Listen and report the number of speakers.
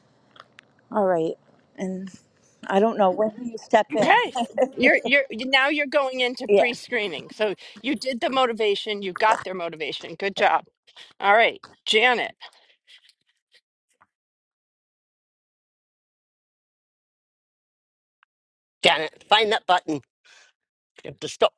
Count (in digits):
3